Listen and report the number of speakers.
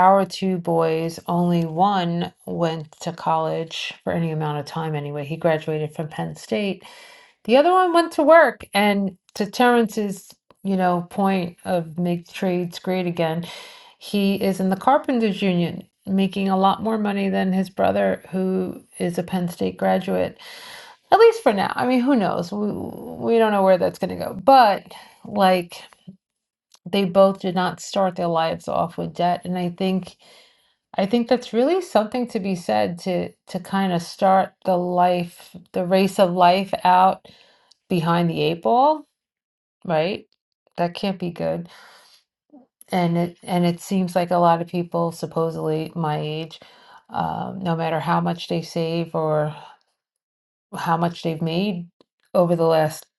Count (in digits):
1